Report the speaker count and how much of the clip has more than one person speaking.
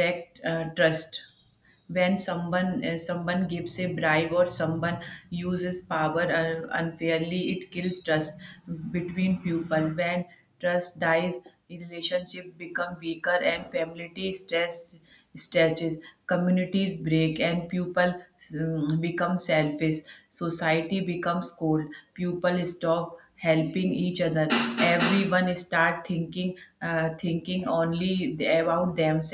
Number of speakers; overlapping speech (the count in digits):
1, no overlap